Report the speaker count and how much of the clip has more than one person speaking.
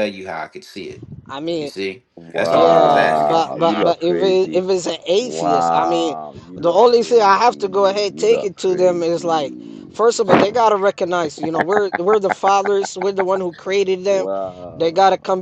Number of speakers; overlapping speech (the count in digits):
3, about 43%